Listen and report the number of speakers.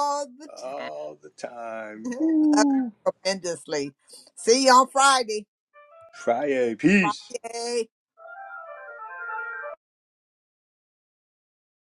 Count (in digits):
2